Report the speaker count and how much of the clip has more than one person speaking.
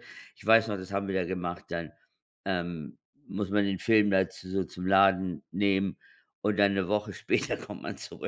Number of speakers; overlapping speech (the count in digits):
1, no overlap